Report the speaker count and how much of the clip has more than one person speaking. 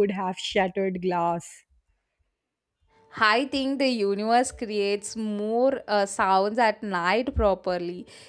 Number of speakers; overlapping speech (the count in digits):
2, no overlap